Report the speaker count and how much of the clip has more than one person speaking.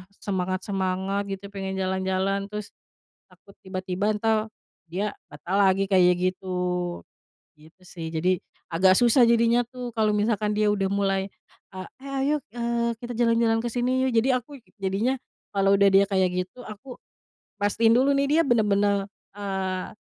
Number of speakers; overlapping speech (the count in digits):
1, no overlap